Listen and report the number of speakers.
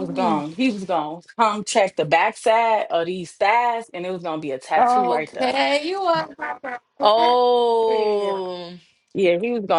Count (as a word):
three